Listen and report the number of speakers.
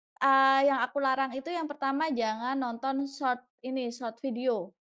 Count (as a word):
one